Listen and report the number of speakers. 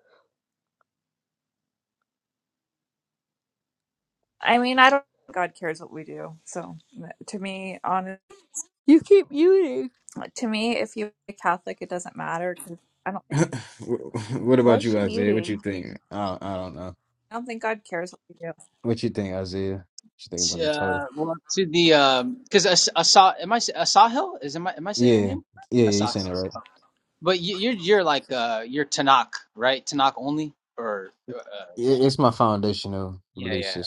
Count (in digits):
4